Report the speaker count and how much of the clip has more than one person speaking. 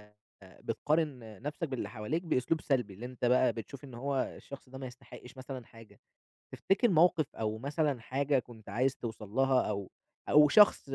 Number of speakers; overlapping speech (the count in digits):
1, no overlap